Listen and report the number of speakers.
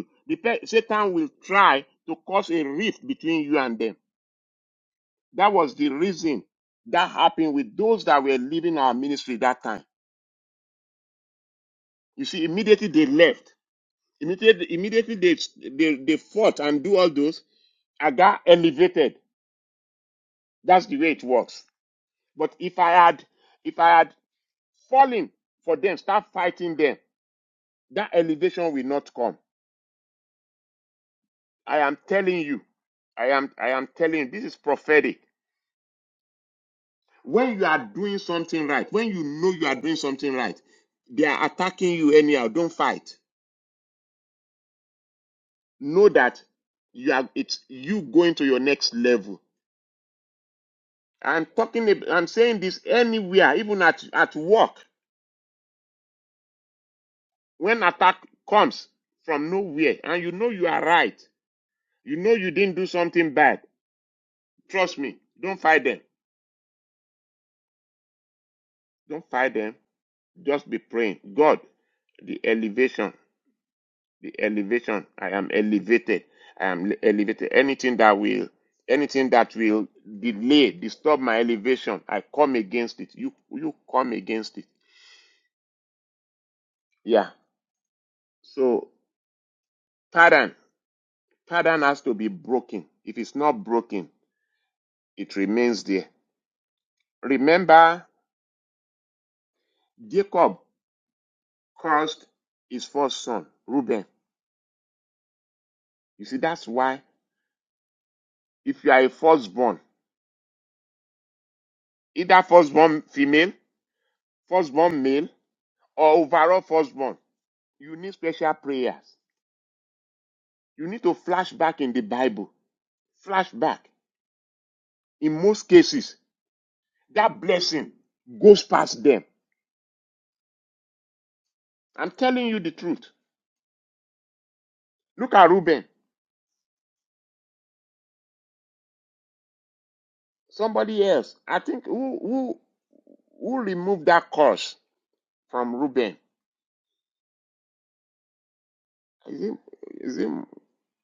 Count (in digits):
1